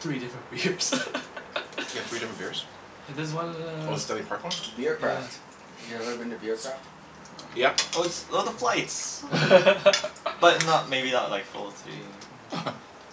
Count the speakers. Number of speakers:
4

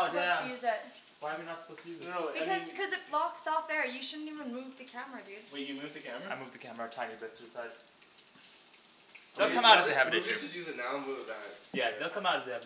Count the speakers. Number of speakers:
4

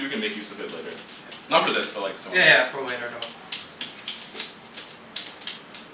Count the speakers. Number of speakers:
2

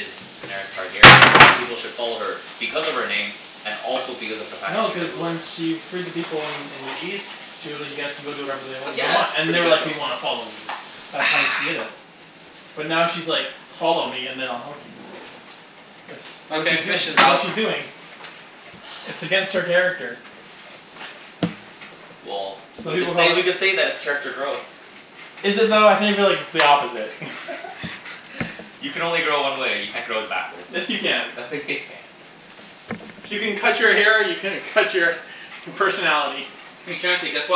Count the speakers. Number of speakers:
3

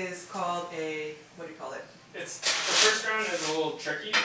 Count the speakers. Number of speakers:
2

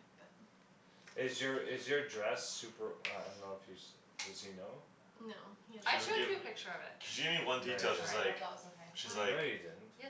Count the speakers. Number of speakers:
4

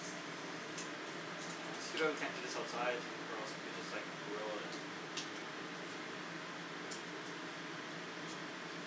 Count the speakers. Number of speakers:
1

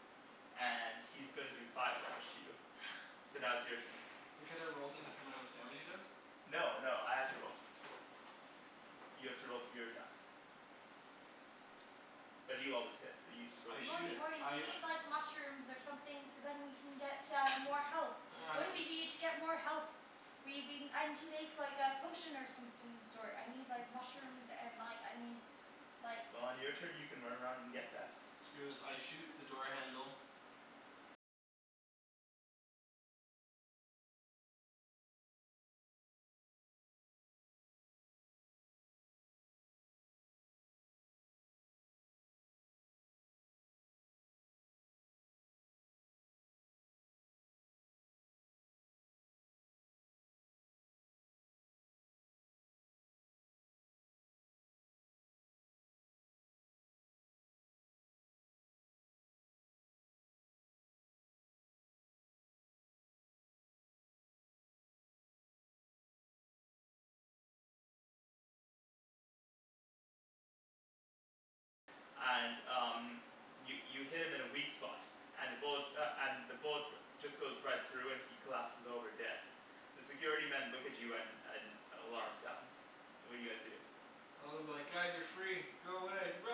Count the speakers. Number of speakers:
3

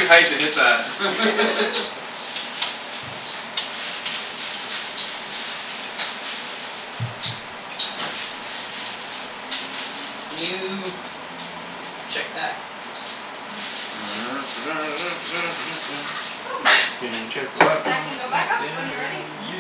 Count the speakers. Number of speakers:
3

